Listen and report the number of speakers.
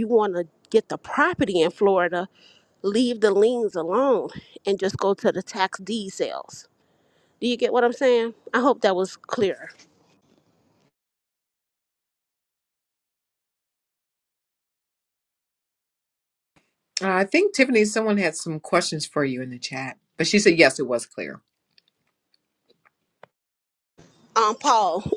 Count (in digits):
2